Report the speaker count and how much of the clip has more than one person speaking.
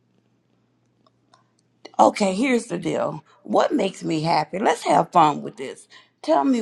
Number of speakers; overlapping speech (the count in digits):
1, no overlap